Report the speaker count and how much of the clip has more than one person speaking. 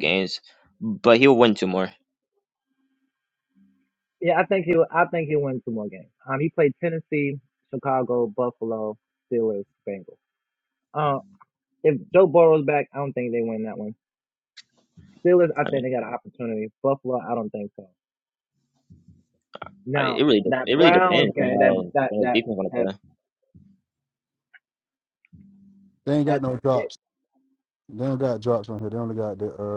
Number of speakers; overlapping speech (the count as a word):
three, about 10%